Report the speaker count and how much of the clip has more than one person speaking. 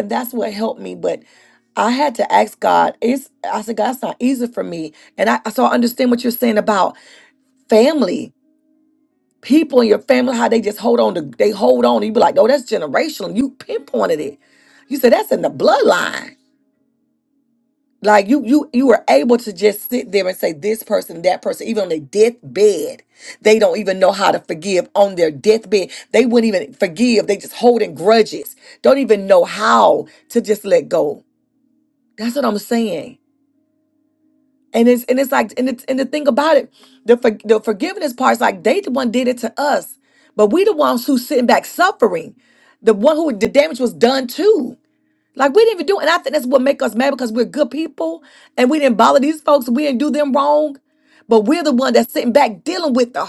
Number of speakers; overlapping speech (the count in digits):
1, no overlap